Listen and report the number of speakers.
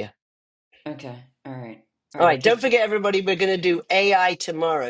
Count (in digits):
2